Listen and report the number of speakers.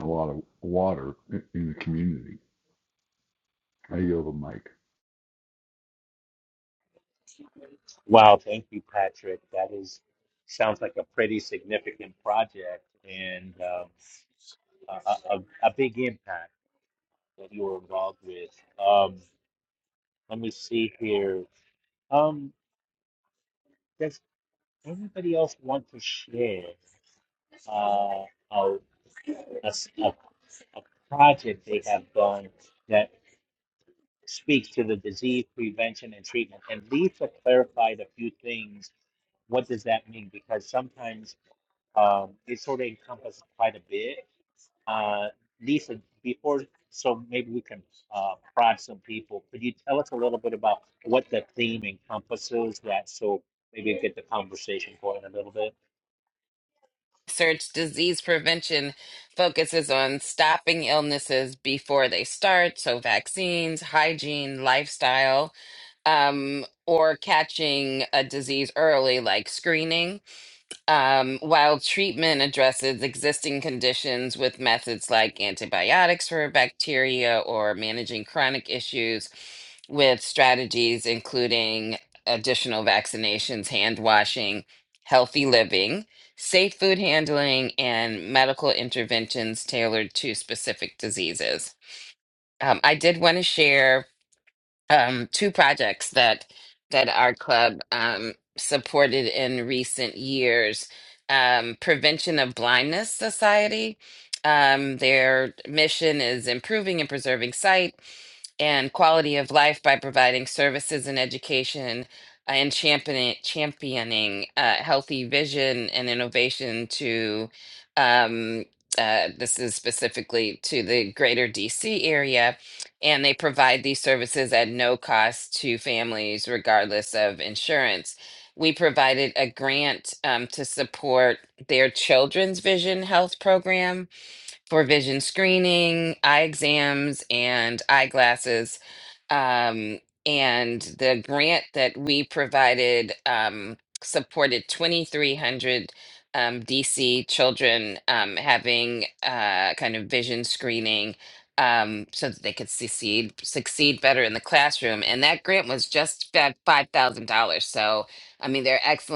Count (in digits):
3